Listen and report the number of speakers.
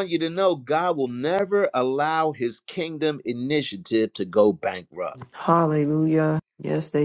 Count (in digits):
2